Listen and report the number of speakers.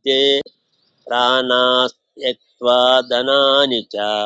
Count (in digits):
1